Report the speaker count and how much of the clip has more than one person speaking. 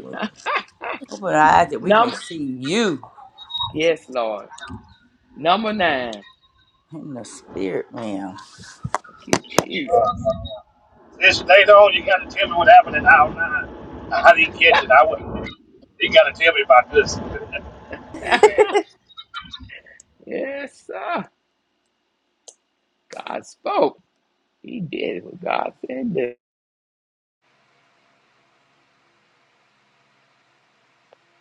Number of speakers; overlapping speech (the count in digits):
3, about 2%